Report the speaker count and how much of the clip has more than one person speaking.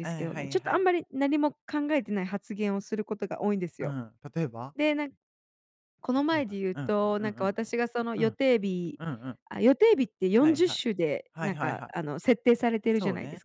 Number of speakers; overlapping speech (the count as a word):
two, about 26%